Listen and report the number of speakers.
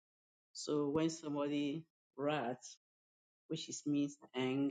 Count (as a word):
one